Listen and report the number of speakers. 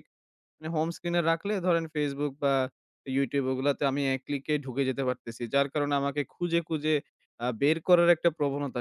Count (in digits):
1